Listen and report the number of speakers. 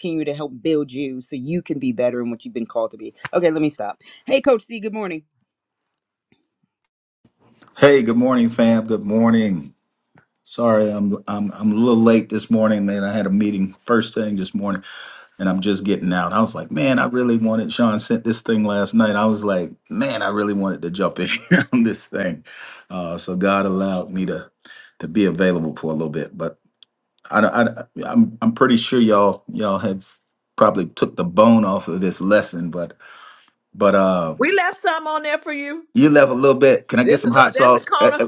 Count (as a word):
three